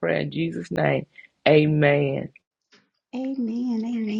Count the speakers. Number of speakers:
two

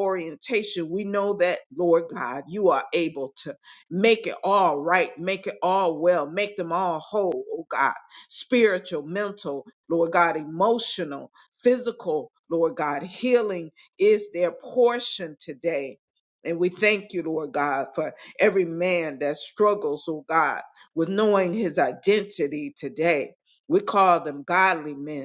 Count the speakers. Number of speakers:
one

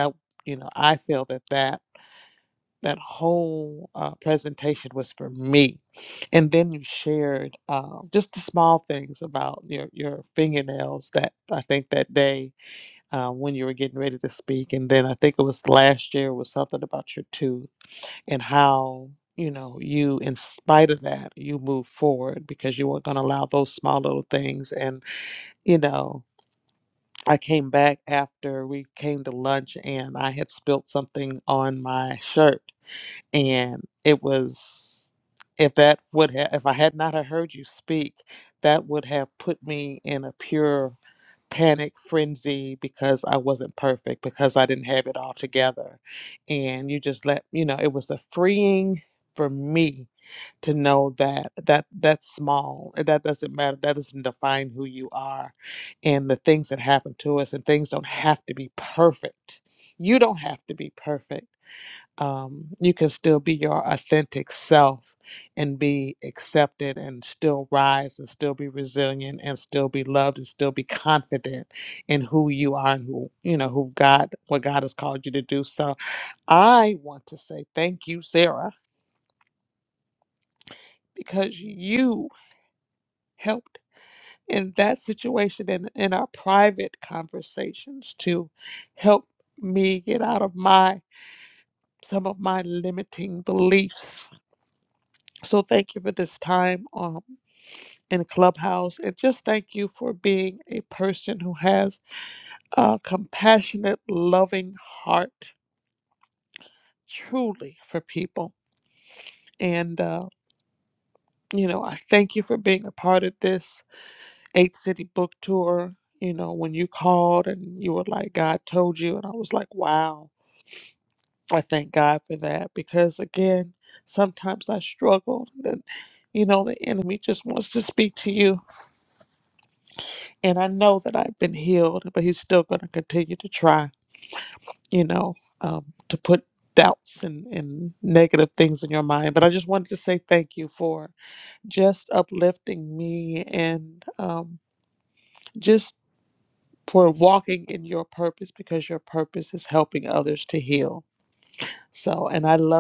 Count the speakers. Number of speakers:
one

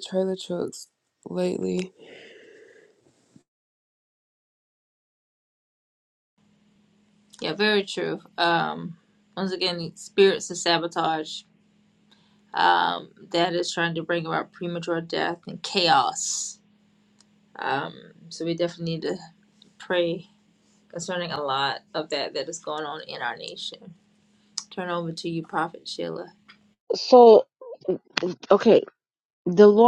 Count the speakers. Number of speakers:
three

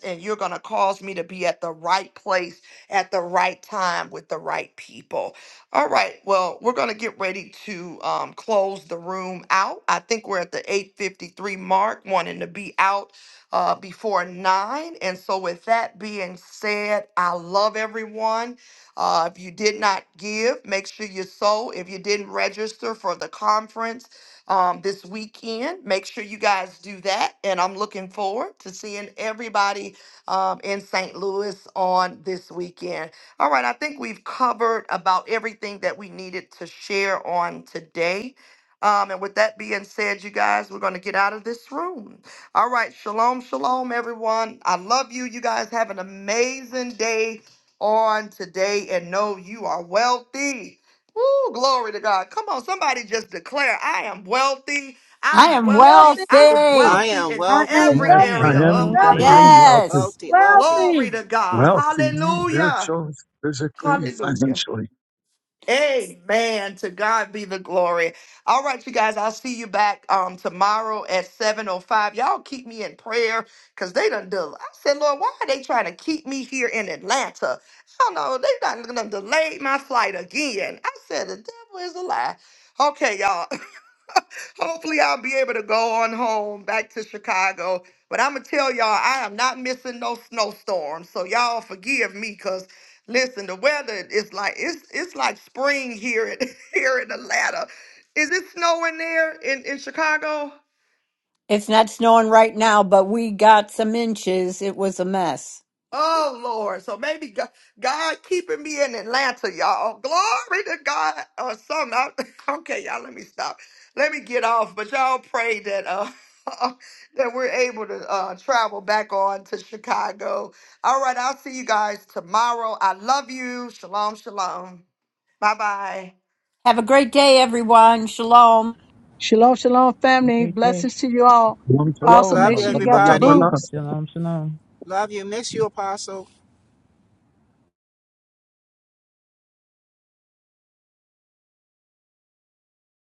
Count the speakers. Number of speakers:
six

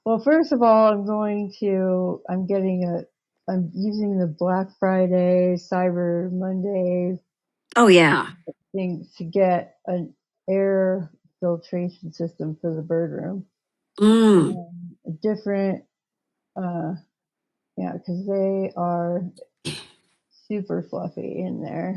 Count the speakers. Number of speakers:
two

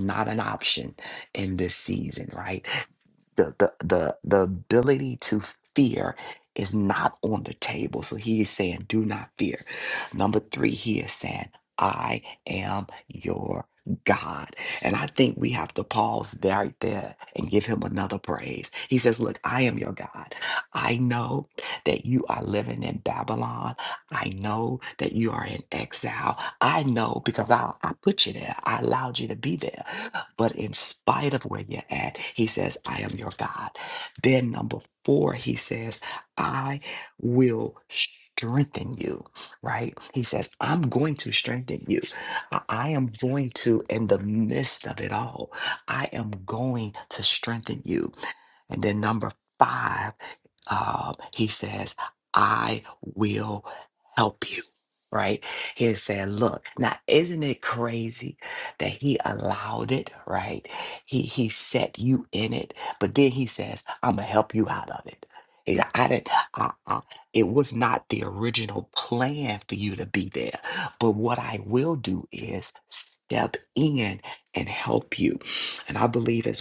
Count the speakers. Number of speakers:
one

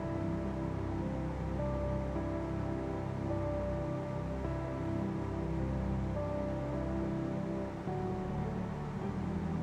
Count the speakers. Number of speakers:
zero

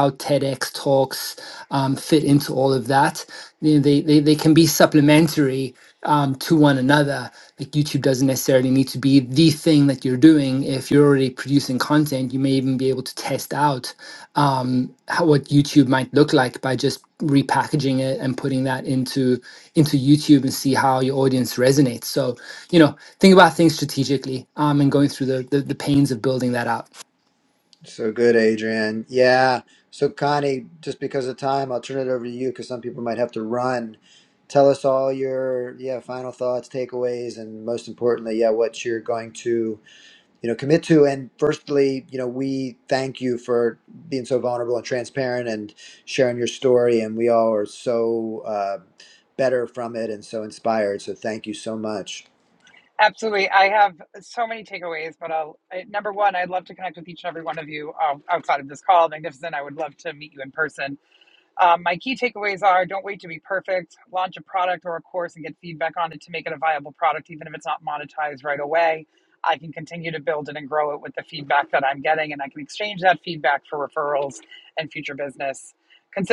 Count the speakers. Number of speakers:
three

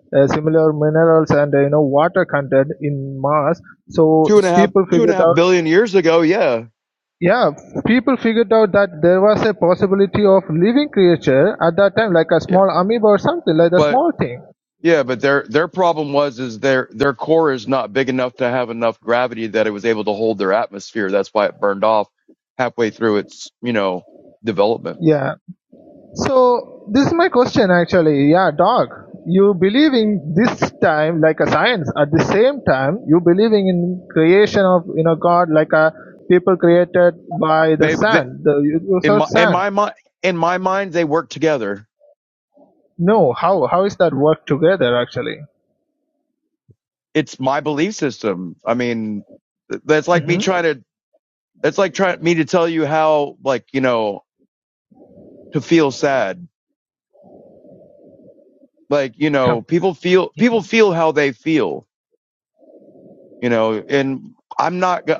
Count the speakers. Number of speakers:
two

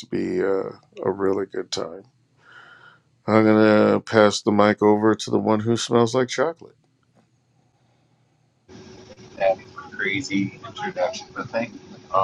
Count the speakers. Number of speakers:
two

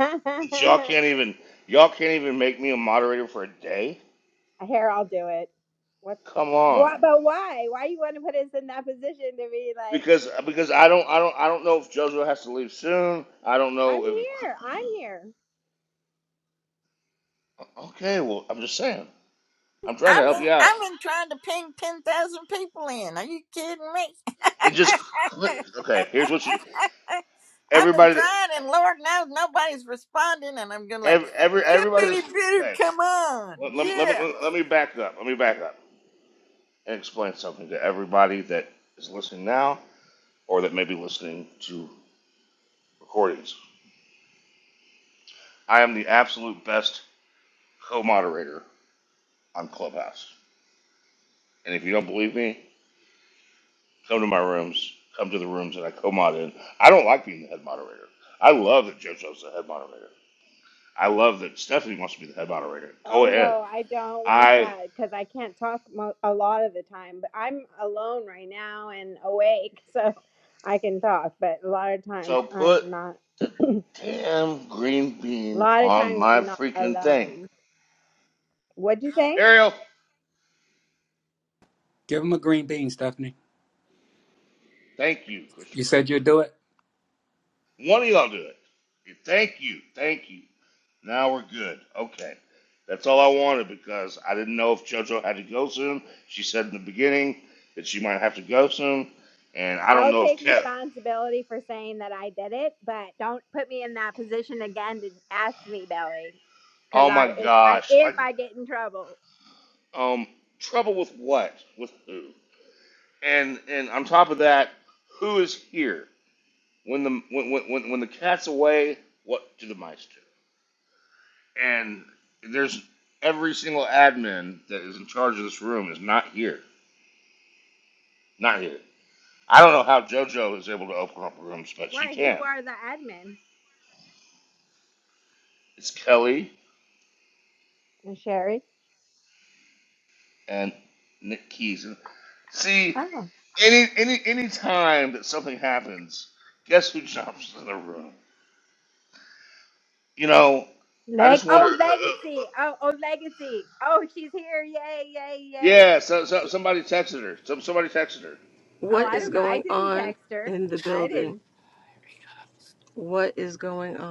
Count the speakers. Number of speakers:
five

